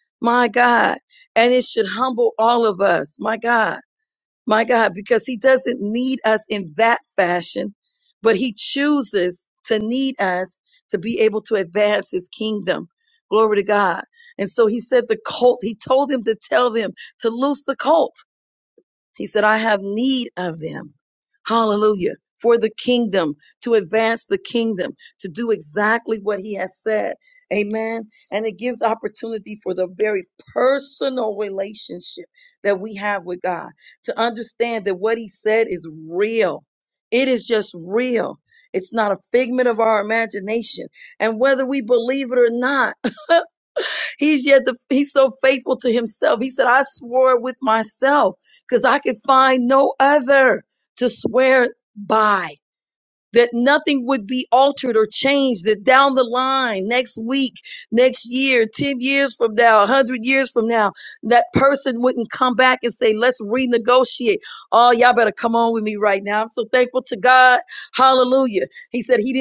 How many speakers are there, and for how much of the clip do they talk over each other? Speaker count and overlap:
1, no overlap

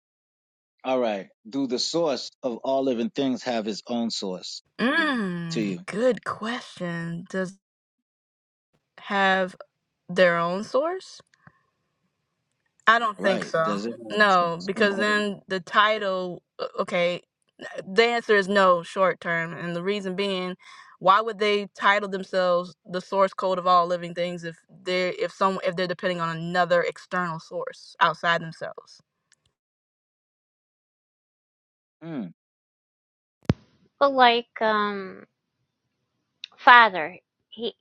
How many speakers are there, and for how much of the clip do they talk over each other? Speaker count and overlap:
3, about 5%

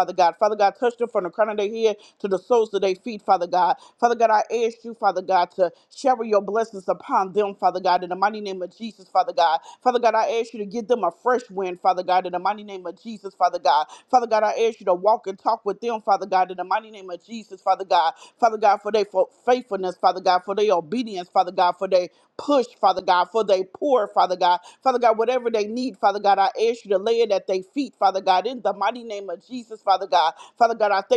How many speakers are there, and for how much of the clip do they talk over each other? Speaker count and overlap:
1, no overlap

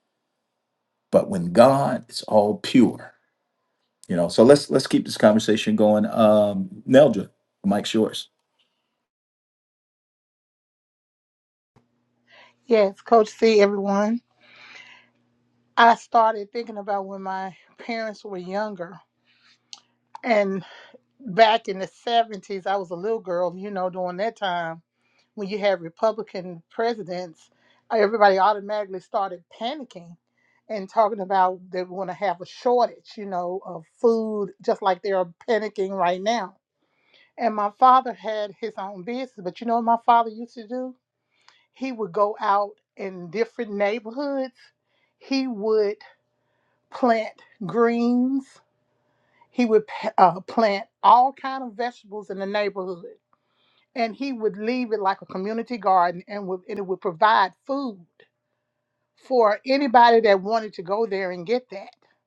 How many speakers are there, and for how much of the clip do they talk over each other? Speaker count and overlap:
2, no overlap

